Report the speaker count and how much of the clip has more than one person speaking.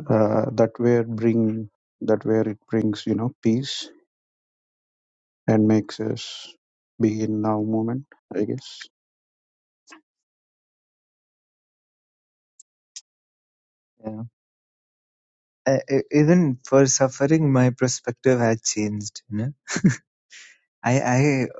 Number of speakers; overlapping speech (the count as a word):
two, no overlap